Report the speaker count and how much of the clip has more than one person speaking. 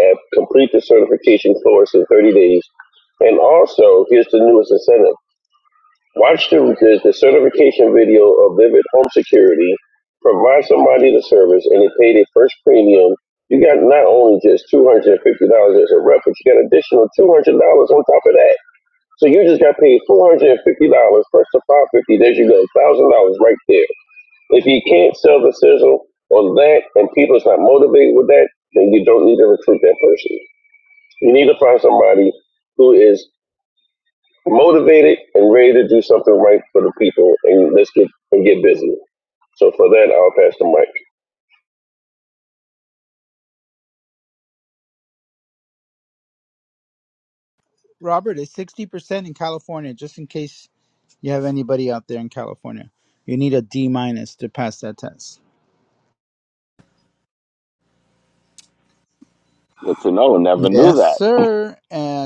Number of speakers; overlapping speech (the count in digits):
3, about 1%